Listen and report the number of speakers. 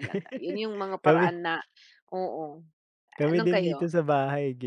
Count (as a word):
two